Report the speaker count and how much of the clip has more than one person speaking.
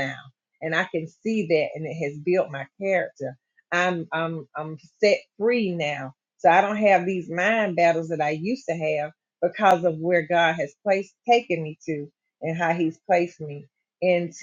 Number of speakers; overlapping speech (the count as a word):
one, no overlap